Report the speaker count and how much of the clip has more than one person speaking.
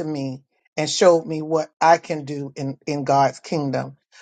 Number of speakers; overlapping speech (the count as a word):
one, no overlap